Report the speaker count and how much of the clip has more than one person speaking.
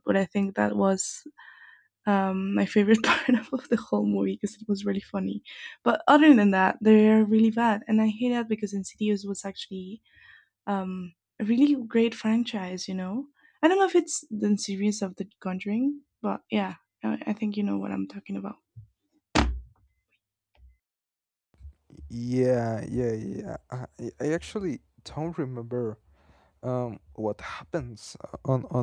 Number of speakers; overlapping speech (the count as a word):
two, no overlap